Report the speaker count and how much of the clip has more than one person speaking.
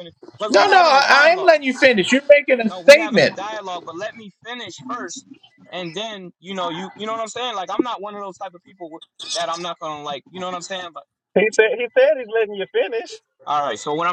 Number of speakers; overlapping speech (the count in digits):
3, about 13%